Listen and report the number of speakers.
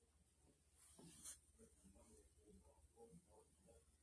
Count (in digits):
0